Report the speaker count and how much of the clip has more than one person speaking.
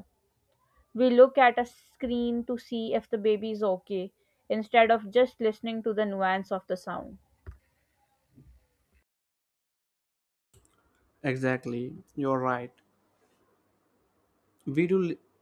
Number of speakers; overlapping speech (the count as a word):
two, no overlap